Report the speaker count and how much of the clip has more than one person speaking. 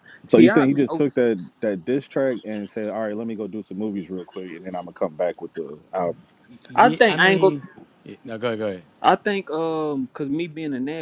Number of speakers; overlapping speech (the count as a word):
three, about 16%